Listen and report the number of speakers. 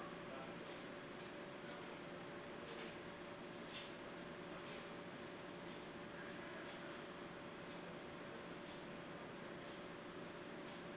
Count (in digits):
0